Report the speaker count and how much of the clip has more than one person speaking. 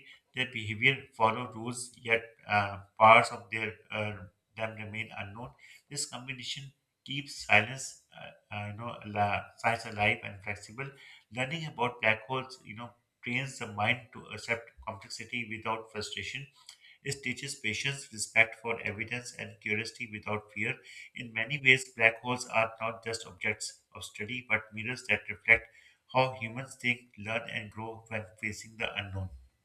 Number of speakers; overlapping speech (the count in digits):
1, no overlap